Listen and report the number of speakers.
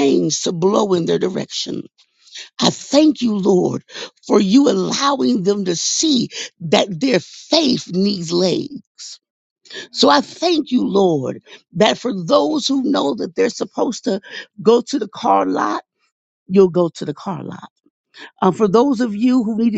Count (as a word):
one